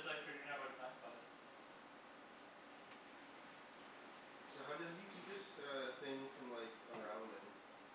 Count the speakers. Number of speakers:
two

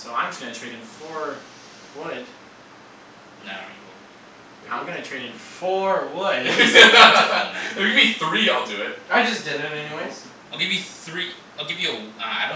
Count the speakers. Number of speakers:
four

